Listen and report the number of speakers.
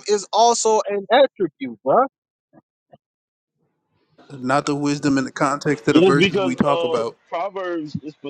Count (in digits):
3